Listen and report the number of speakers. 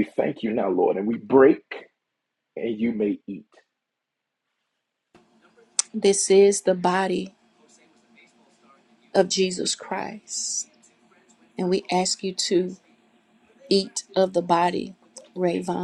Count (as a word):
two